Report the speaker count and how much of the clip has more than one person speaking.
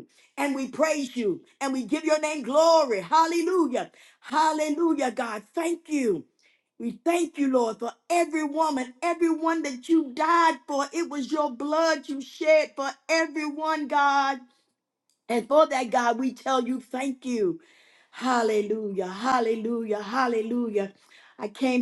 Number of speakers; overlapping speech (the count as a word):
one, no overlap